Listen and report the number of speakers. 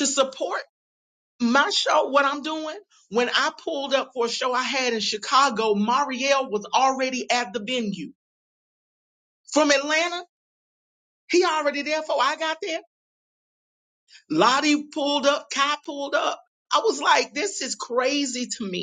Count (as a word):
one